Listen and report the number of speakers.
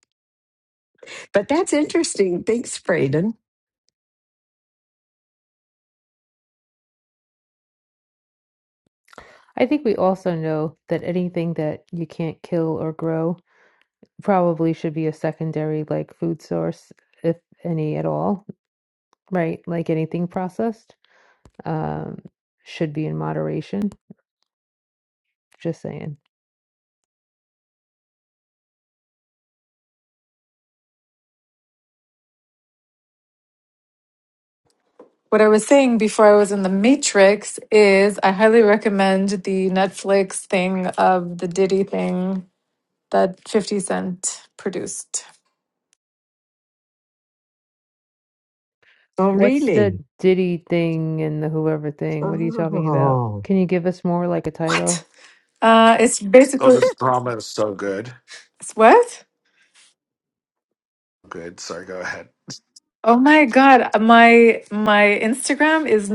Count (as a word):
four